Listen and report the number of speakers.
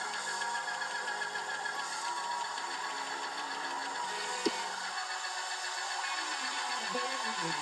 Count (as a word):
zero